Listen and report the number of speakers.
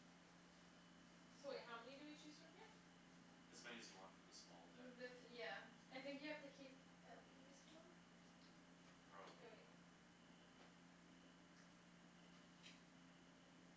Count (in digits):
3